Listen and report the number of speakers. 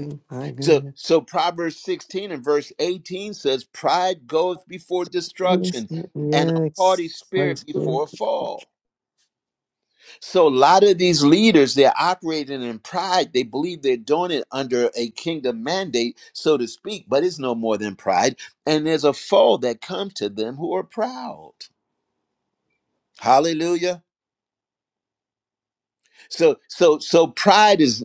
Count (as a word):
two